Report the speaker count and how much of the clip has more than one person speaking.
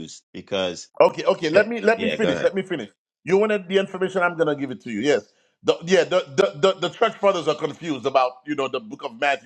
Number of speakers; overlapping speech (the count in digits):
2, about 10%